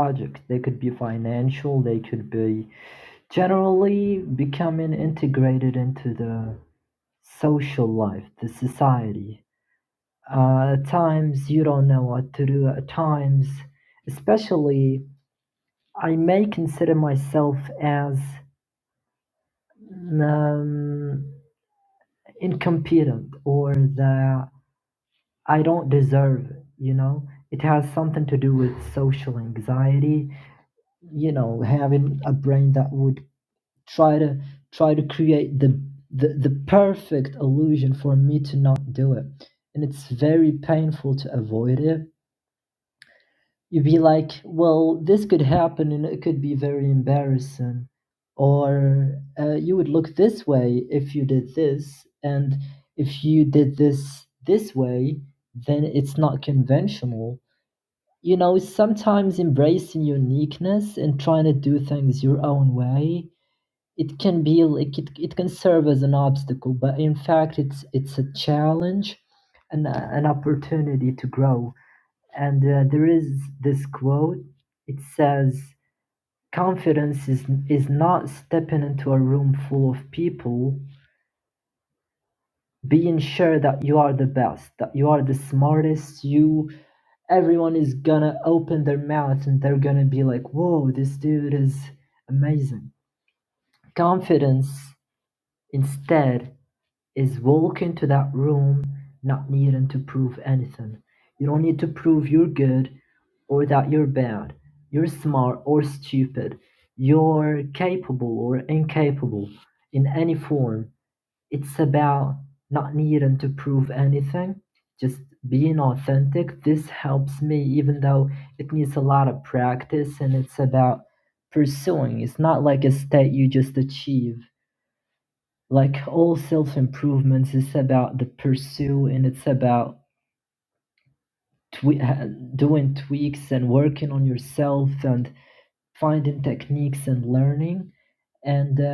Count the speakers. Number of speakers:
1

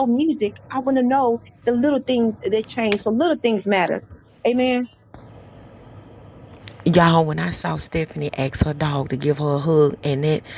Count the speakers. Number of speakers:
2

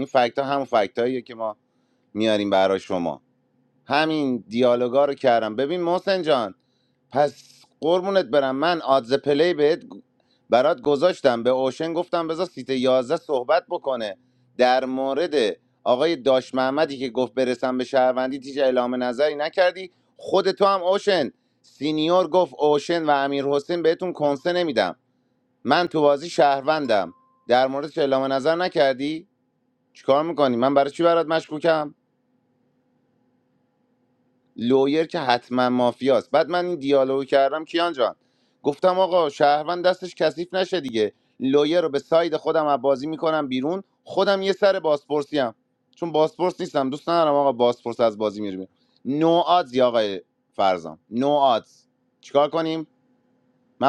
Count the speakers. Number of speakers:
1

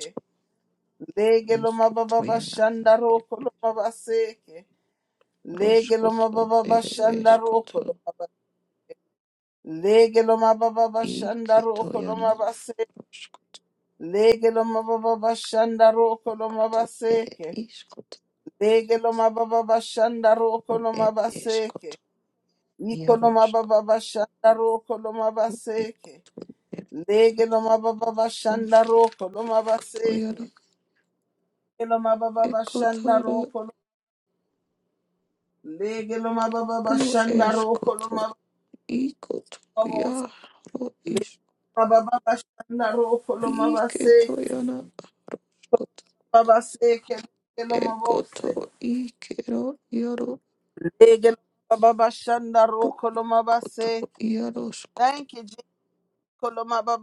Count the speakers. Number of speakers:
2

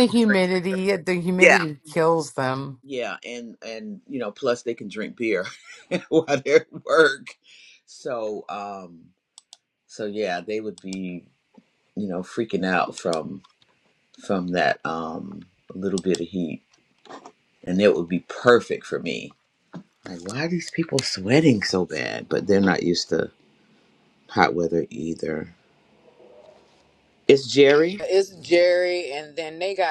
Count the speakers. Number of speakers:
3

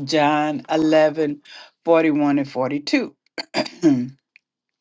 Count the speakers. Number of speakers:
1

